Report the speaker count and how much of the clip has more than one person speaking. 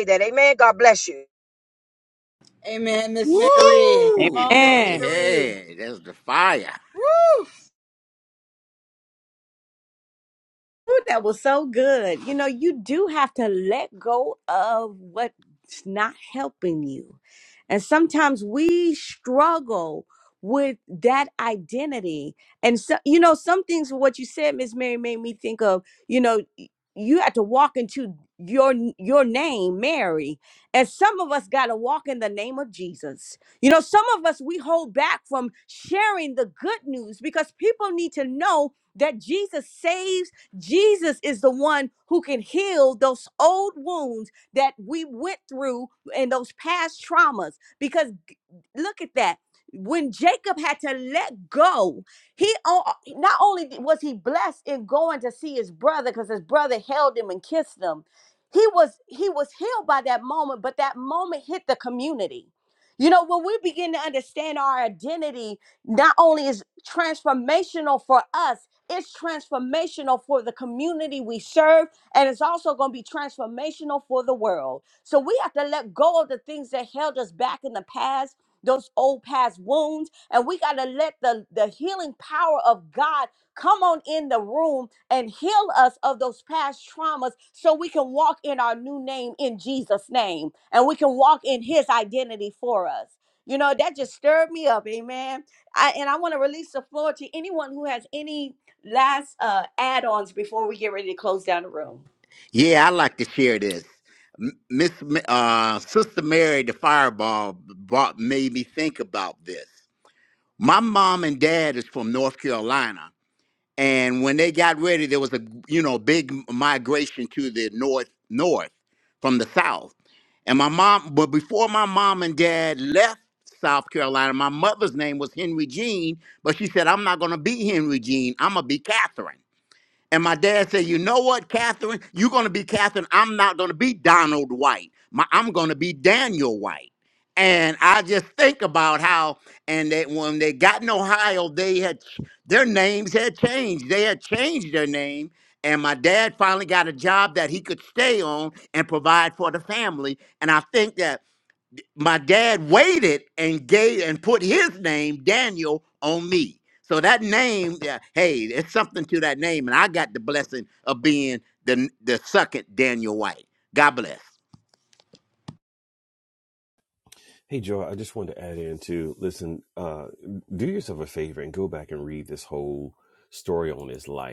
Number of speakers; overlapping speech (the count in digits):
5, about 1%